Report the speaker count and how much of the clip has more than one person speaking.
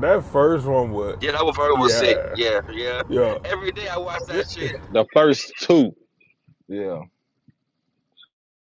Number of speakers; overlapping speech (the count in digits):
3, about 8%